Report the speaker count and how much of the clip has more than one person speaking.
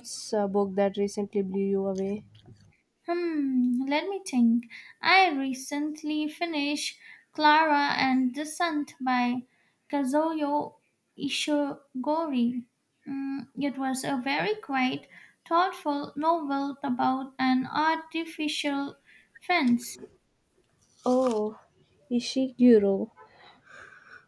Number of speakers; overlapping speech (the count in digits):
2, no overlap